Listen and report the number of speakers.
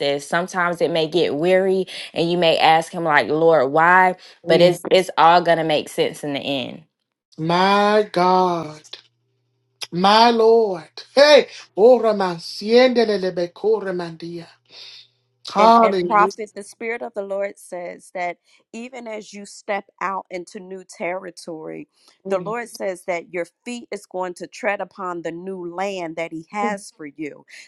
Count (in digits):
3